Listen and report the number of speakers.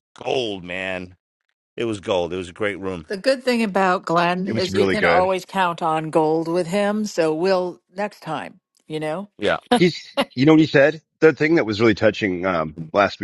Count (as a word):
three